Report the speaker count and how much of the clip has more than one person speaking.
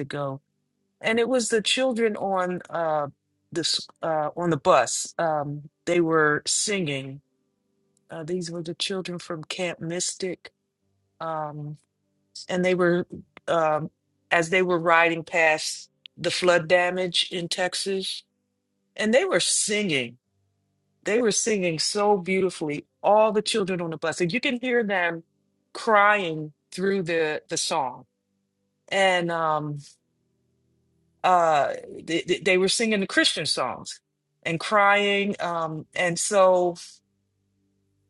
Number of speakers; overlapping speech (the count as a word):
one, no overlap